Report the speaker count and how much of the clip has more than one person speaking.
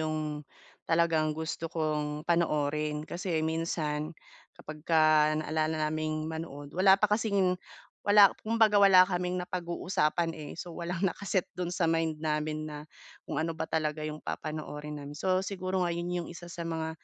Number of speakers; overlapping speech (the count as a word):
one, no overlap